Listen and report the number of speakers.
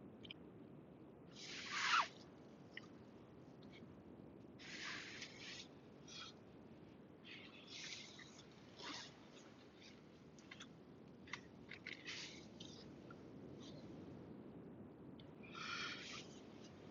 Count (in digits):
0